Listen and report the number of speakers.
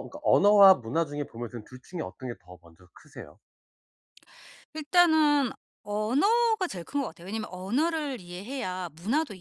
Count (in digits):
2